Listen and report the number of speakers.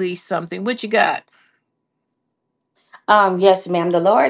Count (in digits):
2